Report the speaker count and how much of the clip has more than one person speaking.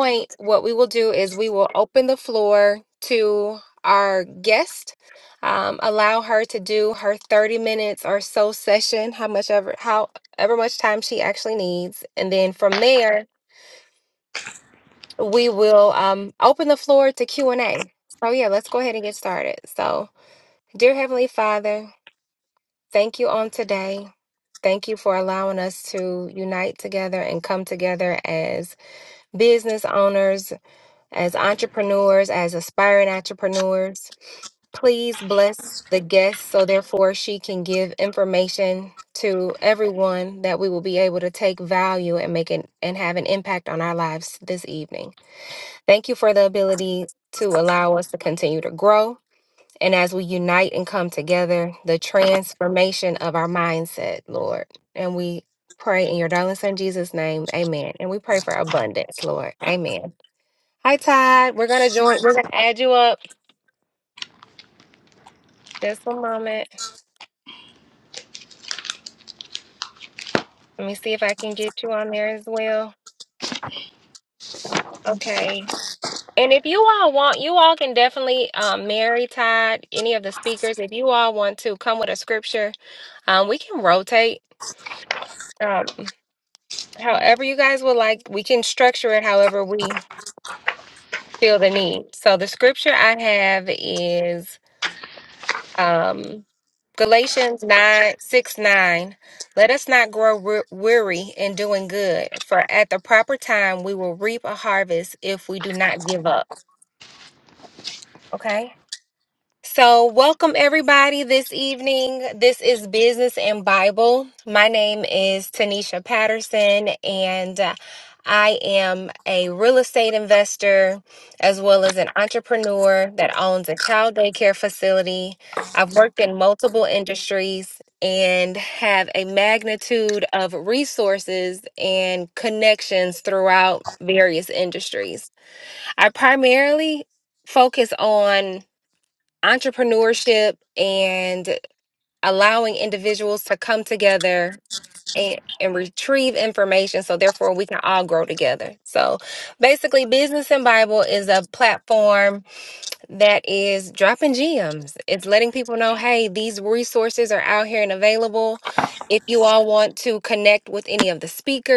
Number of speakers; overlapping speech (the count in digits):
1, no overlap